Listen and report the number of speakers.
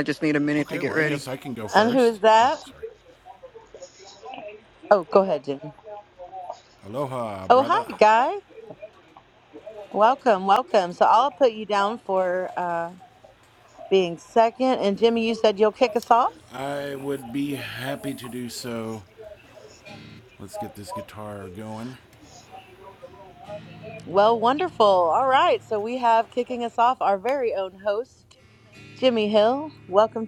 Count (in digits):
3